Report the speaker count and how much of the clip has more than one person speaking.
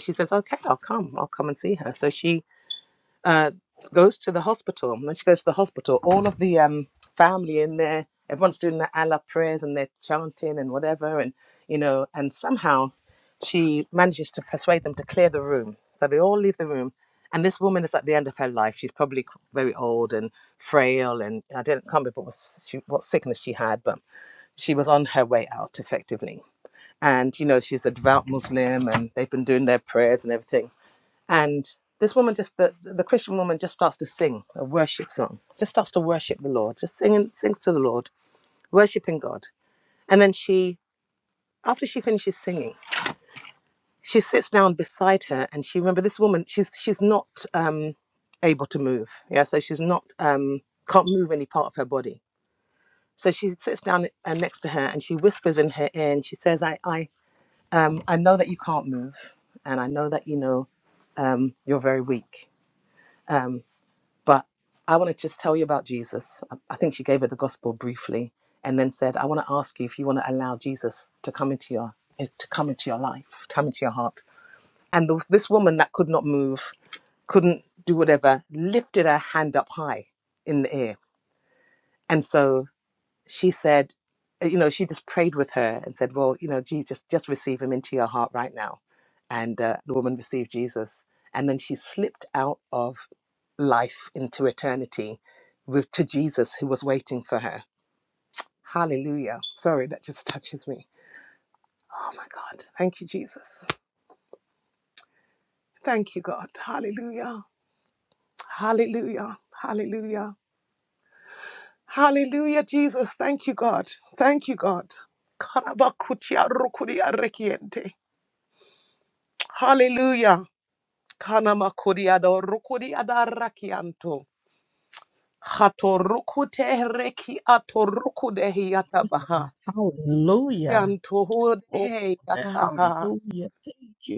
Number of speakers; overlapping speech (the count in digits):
2, about 1%